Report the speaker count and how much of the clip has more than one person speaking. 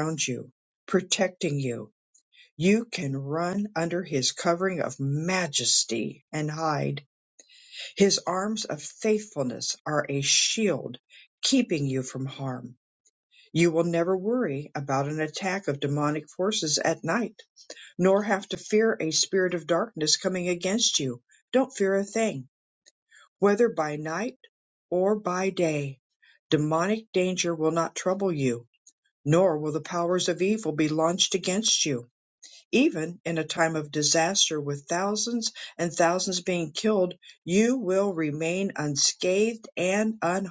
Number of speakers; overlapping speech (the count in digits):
1, no overlap